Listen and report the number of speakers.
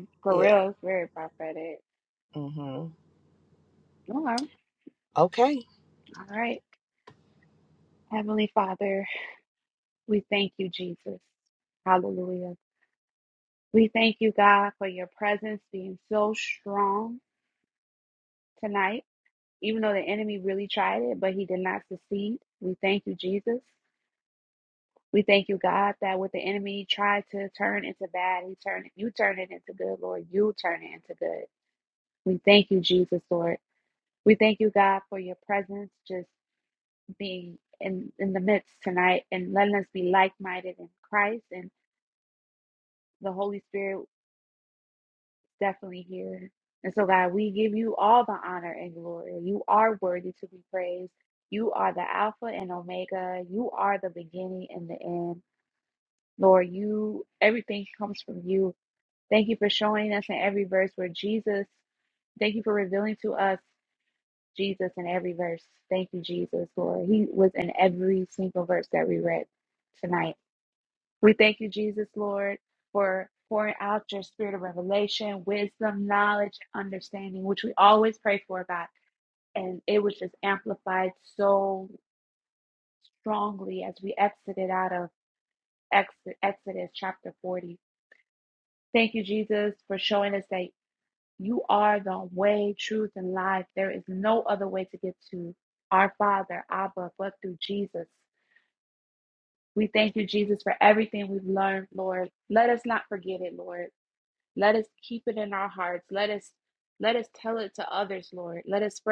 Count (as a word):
two